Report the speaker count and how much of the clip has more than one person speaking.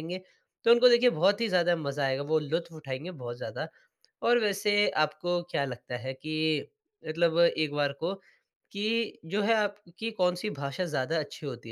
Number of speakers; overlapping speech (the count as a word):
one, no overlap